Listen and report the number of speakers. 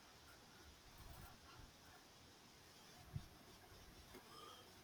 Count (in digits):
0